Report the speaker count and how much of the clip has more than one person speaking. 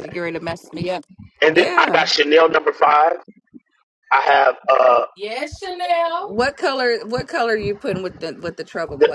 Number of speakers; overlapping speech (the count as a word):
three, about 12%